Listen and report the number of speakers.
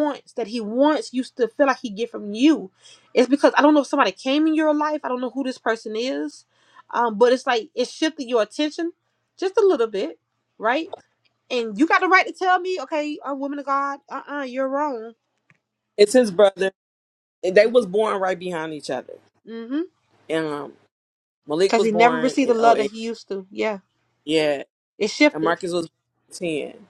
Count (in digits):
2